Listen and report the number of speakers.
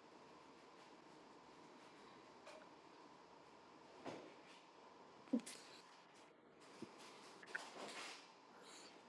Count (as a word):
zero